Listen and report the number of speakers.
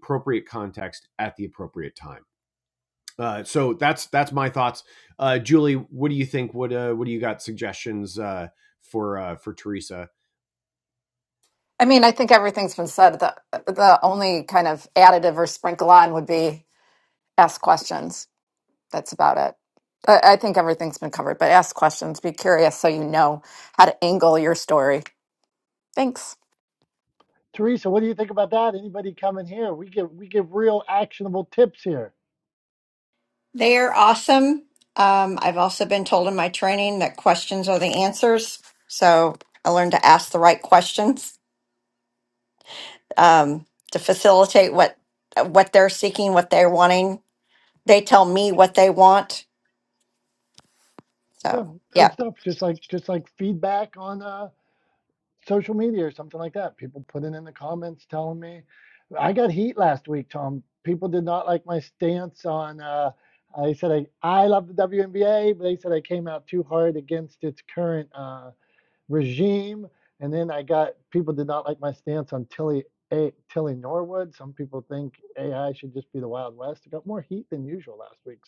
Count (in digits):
4